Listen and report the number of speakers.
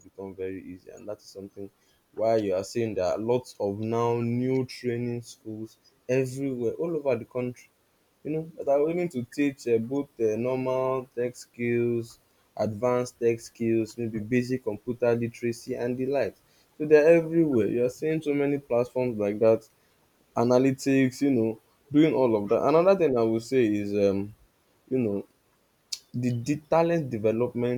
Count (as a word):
one